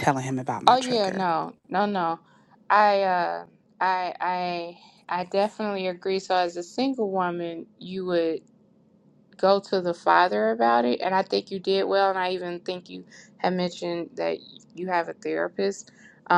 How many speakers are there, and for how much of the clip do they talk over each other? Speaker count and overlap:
2, about 4%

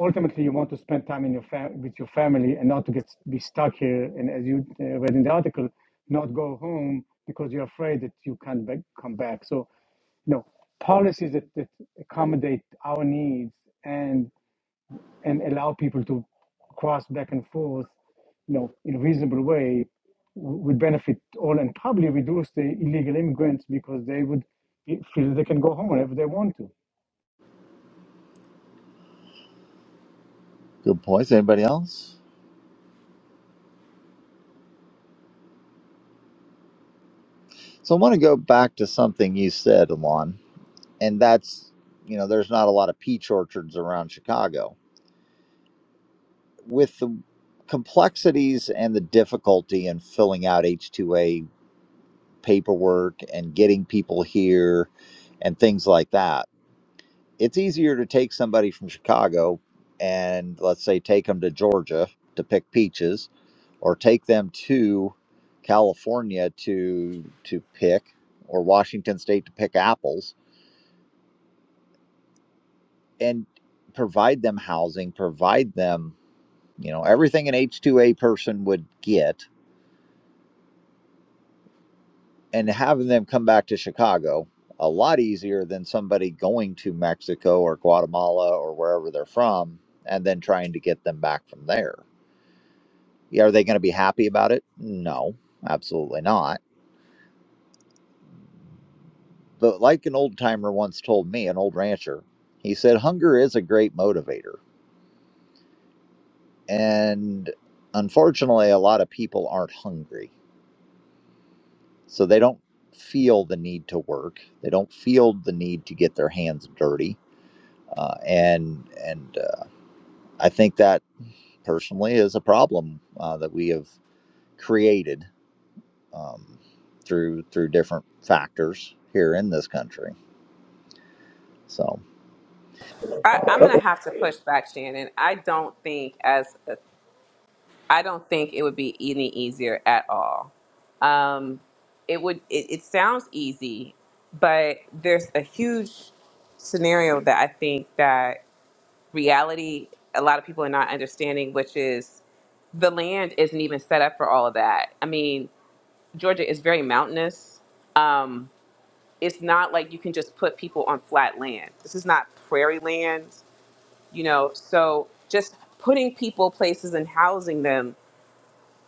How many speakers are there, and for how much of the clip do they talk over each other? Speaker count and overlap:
3, under 1%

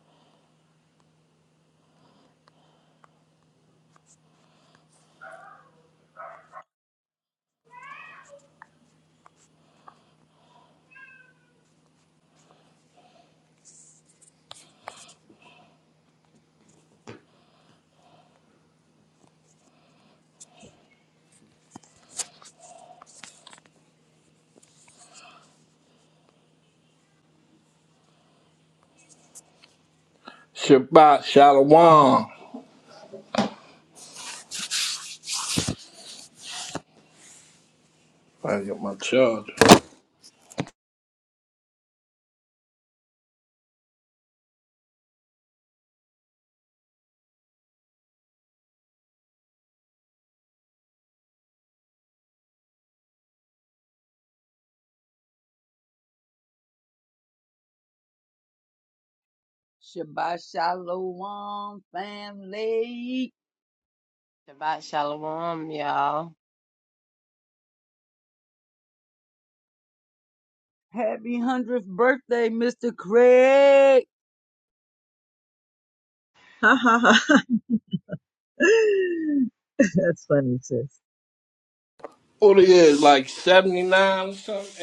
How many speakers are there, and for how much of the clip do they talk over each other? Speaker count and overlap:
4, no overlap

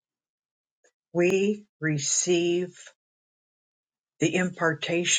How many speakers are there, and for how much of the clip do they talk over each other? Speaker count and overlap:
1, no overlap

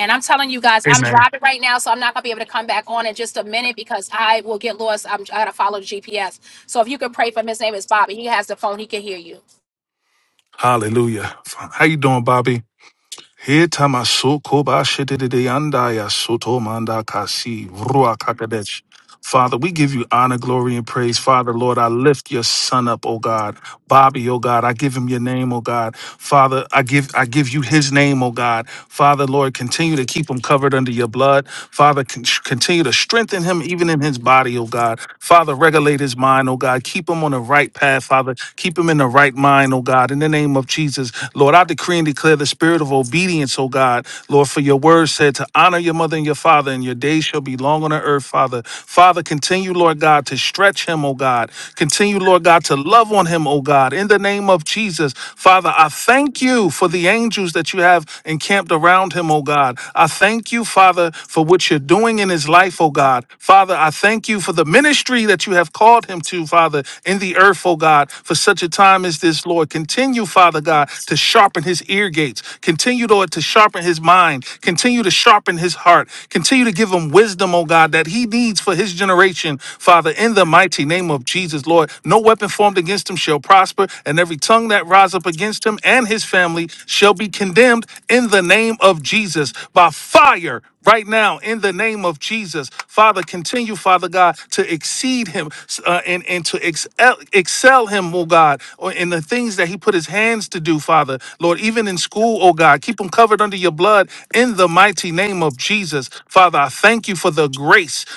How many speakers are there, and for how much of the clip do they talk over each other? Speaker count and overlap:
2, under 1%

